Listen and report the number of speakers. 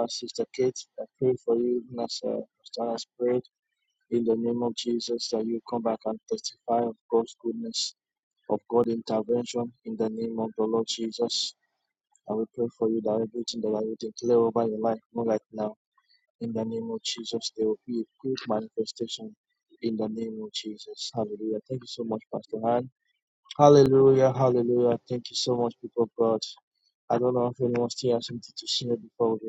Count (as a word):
one